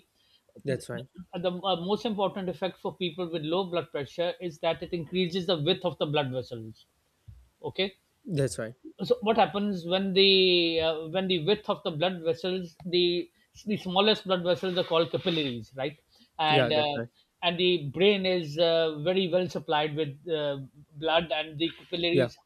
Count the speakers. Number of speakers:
2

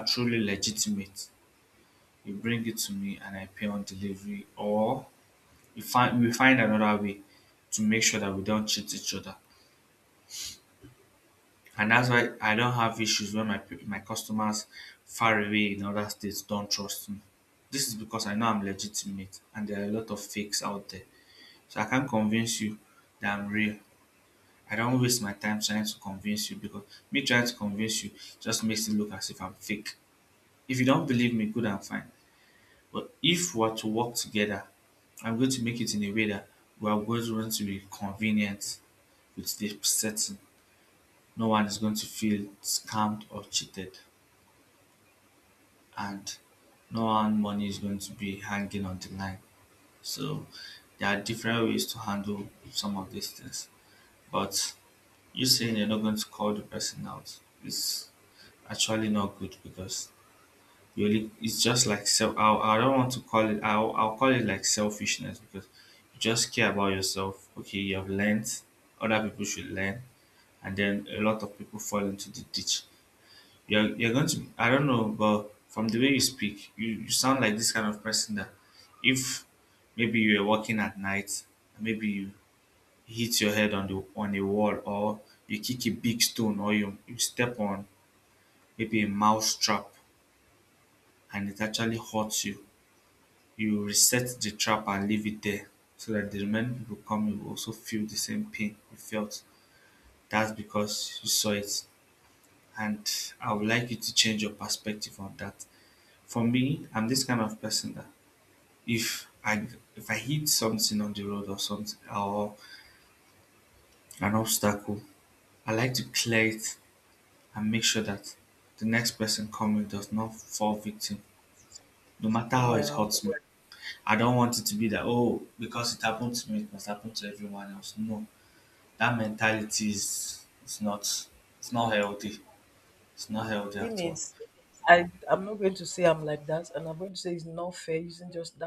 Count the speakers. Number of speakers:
2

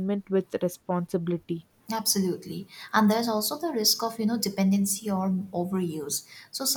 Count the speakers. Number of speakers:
2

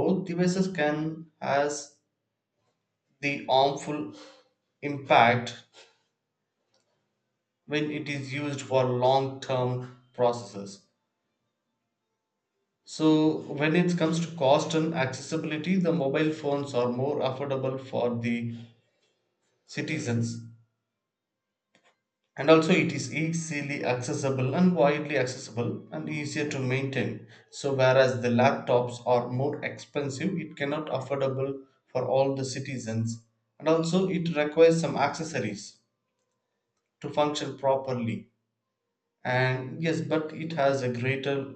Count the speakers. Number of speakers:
1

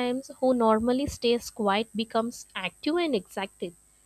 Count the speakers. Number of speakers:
1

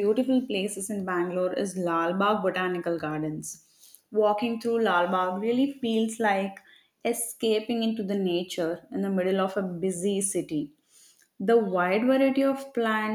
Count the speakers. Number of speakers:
1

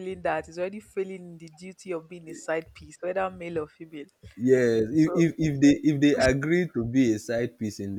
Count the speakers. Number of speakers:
2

